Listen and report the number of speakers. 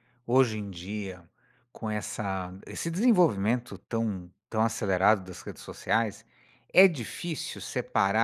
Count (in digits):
1